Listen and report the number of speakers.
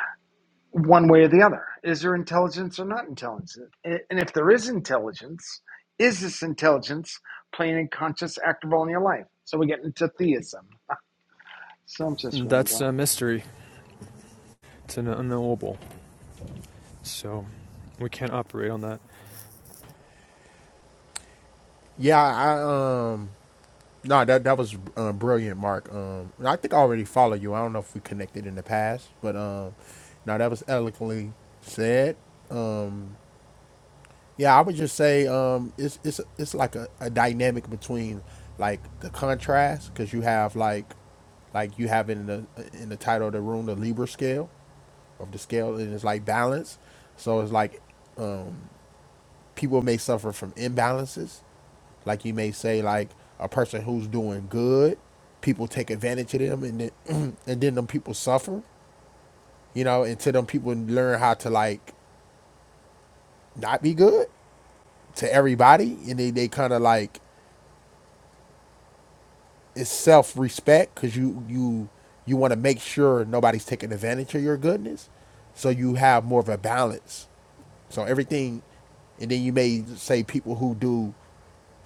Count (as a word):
three